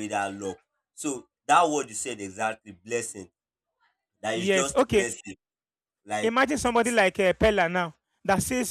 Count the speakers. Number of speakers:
2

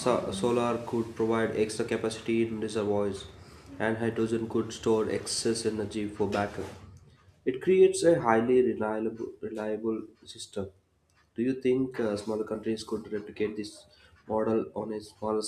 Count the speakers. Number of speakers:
1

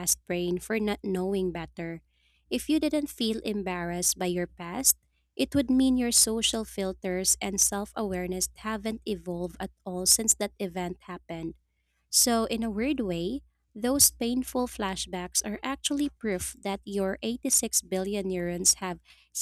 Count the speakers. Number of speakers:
1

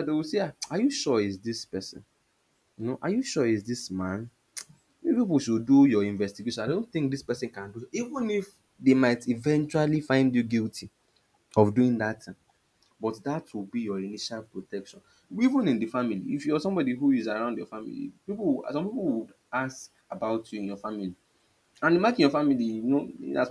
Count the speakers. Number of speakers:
1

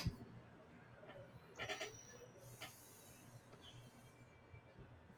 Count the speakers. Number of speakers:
0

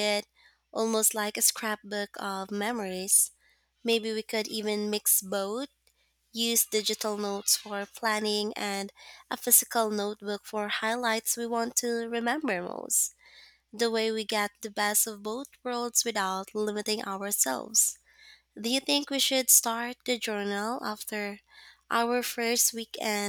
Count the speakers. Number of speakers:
1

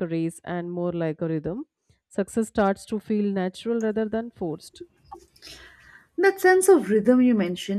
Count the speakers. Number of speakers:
2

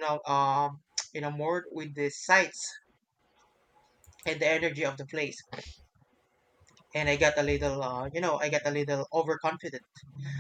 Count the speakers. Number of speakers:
1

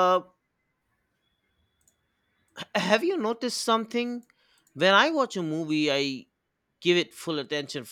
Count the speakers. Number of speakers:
1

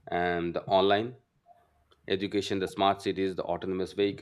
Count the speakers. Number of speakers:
1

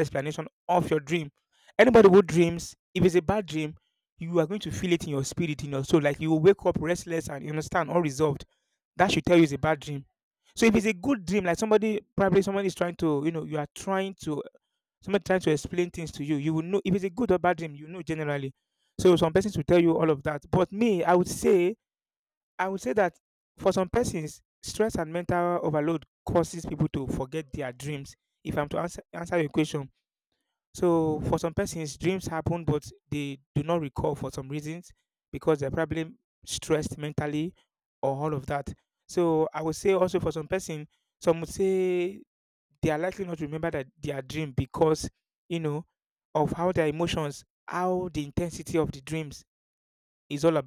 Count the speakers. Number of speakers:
1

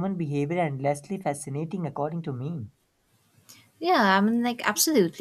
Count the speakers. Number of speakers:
2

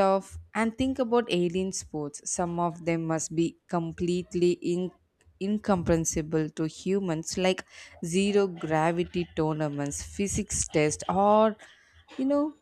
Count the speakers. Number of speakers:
1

